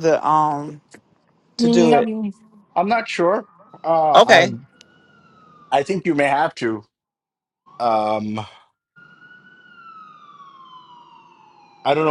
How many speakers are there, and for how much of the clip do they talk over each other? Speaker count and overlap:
2, about 7%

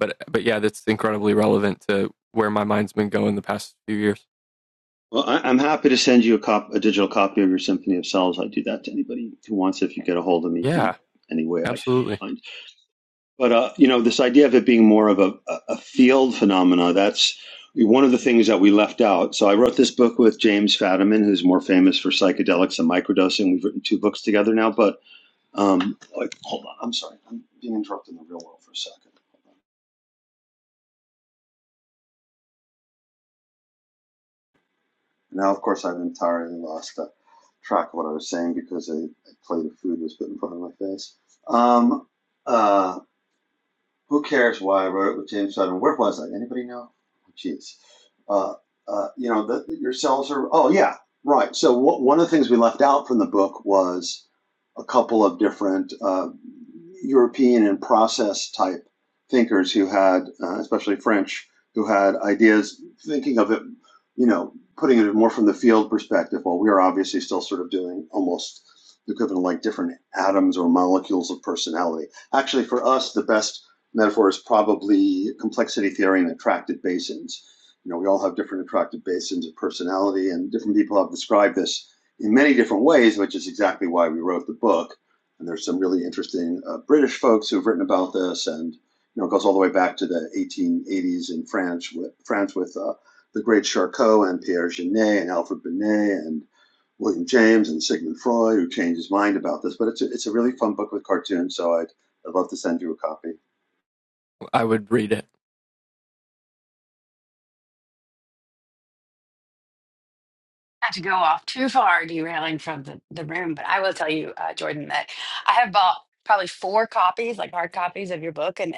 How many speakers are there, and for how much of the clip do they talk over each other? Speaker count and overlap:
3, about 1%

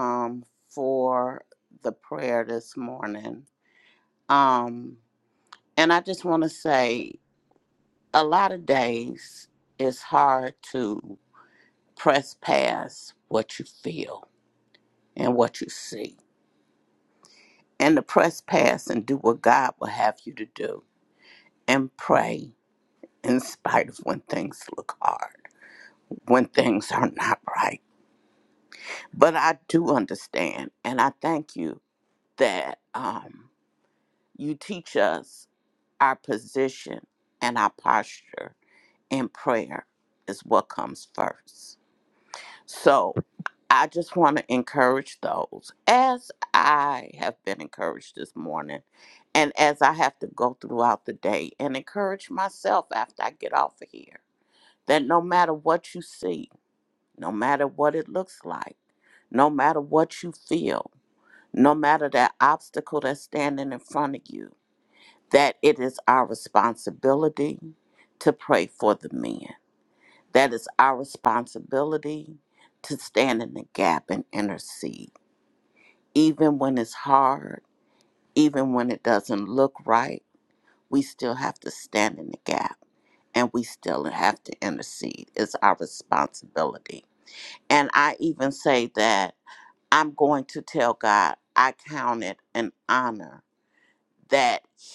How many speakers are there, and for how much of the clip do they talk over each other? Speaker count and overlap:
1, no overlap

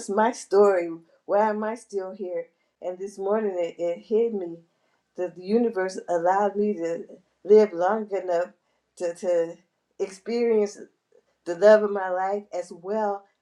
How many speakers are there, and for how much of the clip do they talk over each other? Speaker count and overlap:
1, no overlap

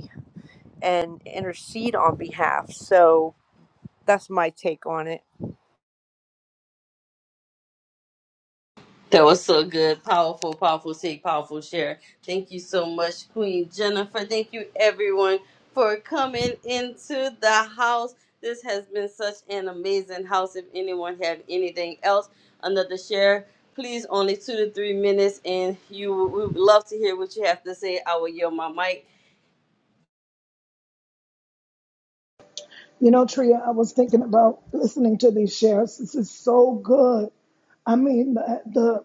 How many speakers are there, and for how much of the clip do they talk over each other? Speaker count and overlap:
3, no overlap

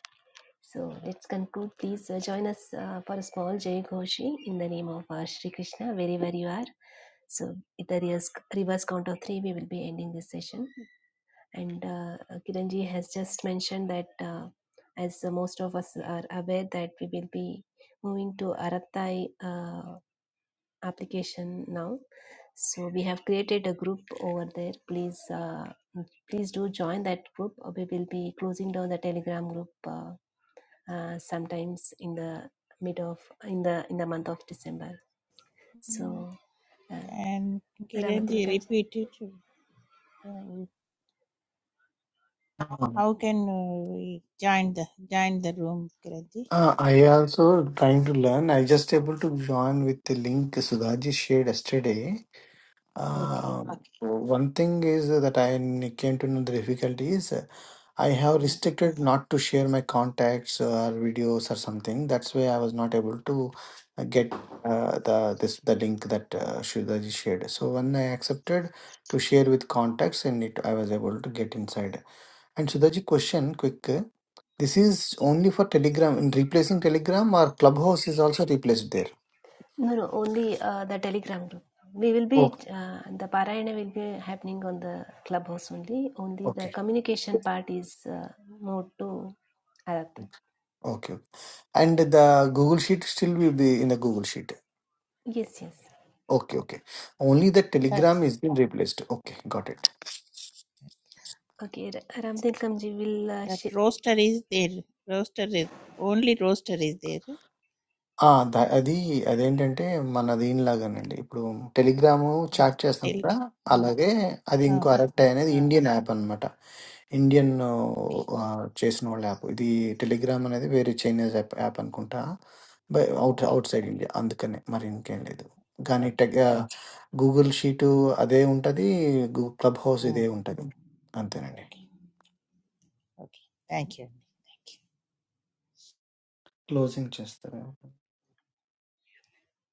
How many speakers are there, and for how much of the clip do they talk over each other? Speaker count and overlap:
3, about 3%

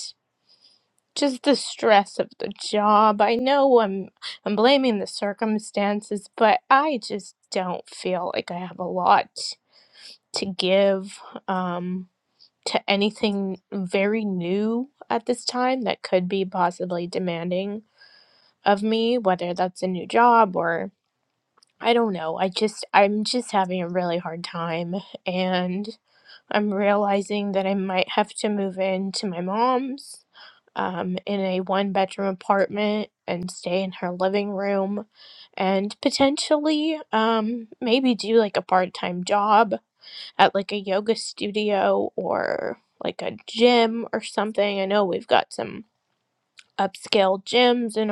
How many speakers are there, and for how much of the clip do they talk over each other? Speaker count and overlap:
1, no overlap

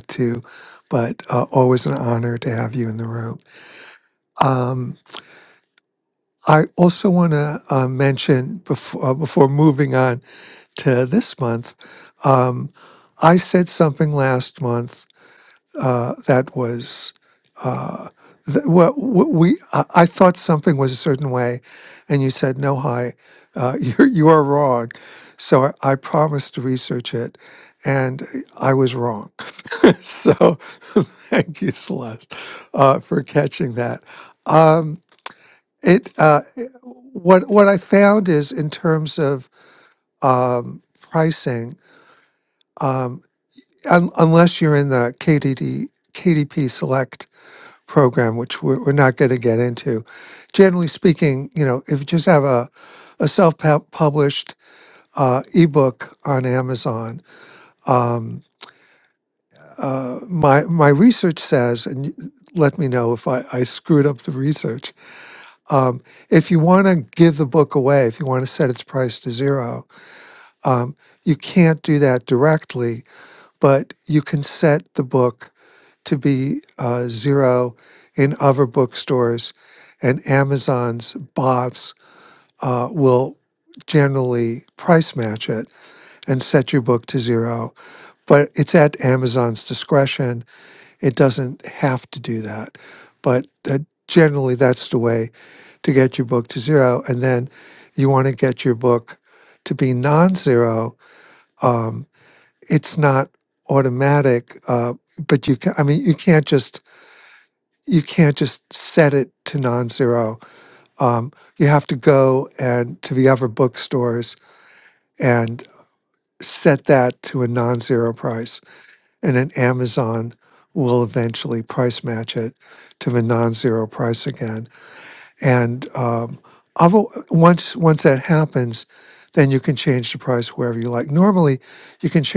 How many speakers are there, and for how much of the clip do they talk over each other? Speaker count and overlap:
1, no overlap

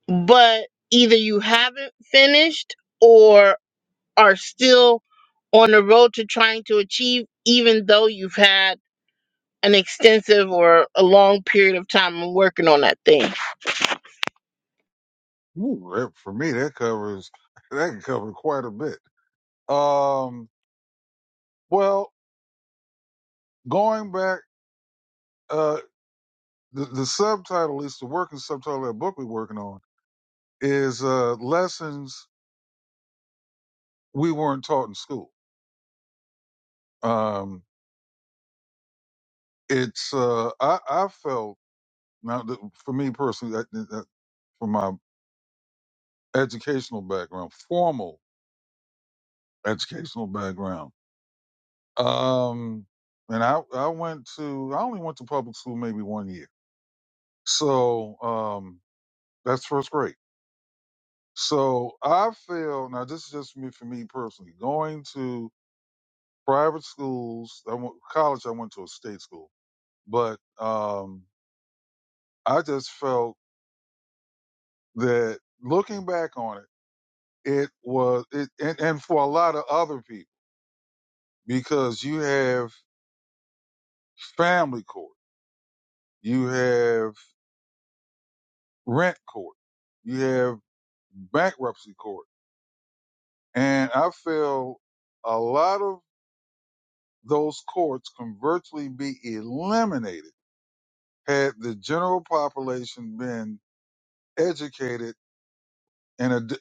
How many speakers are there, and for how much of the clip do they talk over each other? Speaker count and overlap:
2, no overlap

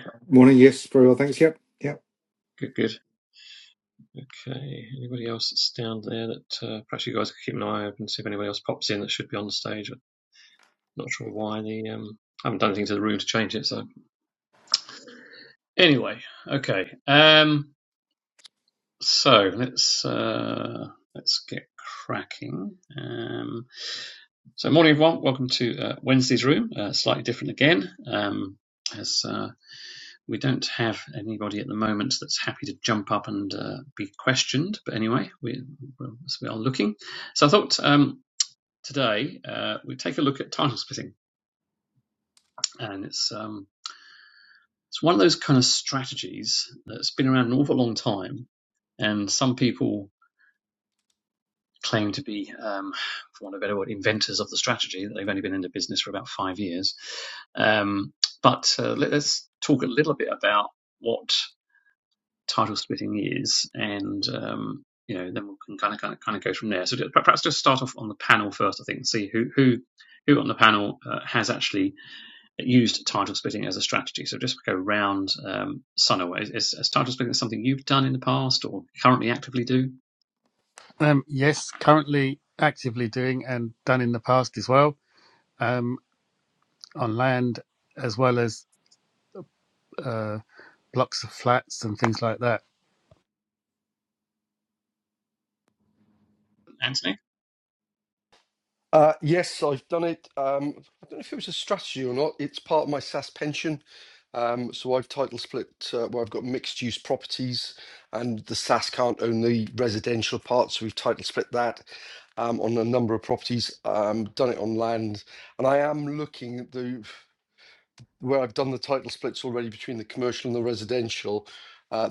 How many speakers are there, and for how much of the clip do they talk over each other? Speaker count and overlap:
4, no overlap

